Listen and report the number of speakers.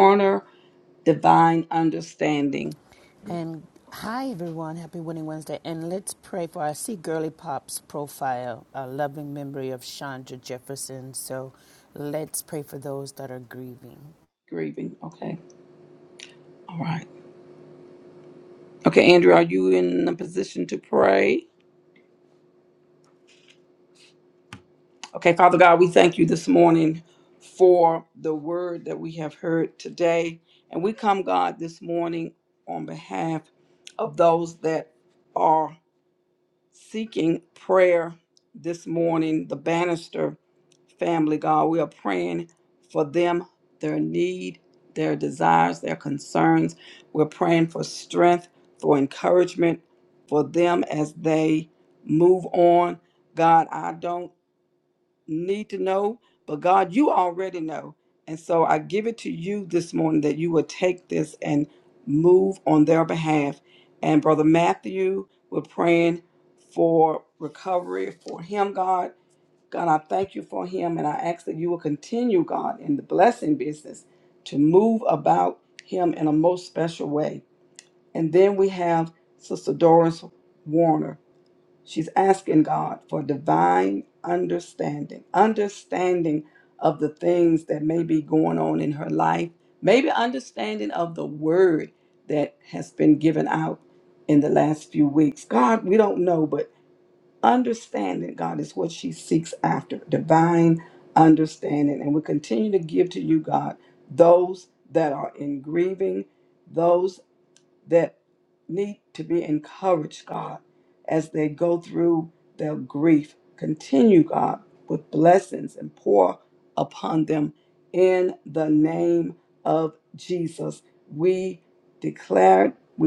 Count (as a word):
two